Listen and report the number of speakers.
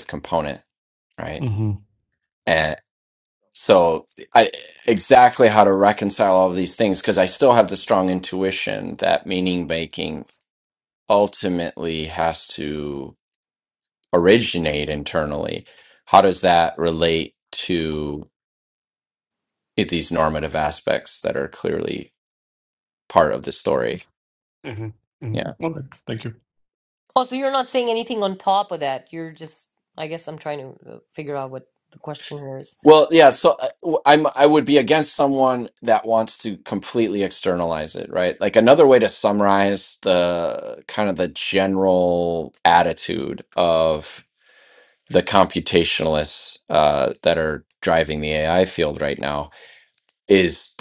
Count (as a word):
three